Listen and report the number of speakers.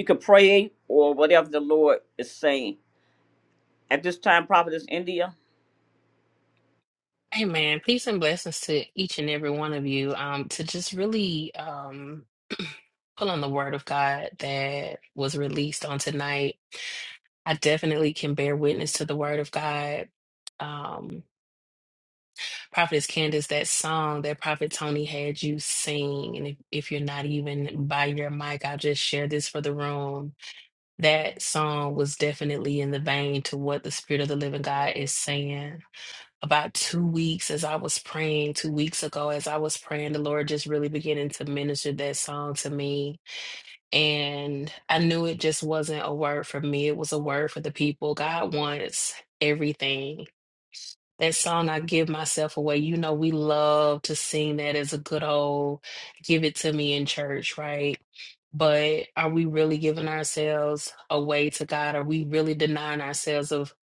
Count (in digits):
2